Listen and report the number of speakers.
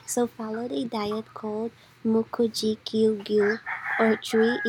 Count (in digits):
1